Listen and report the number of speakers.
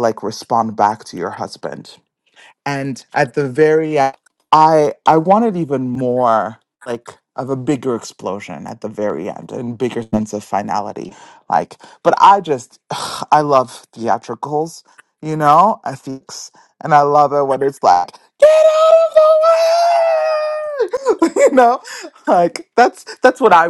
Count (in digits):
1